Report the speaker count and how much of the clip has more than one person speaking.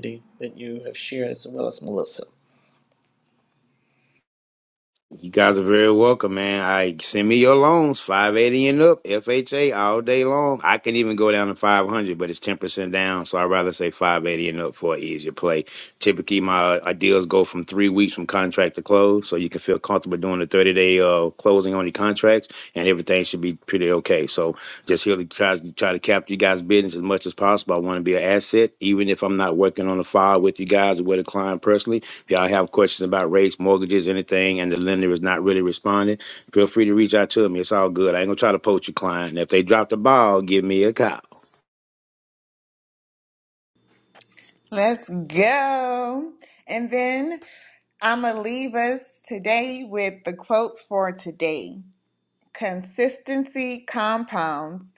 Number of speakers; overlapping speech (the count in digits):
3, no overlap